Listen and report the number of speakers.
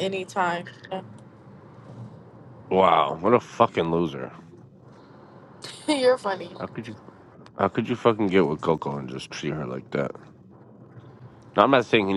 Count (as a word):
two